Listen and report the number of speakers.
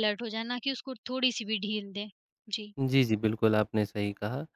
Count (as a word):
two